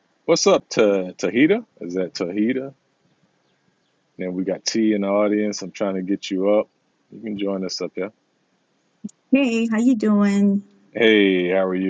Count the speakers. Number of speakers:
2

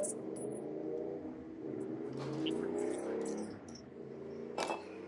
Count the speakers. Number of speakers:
0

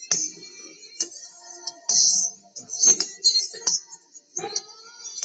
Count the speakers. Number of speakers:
0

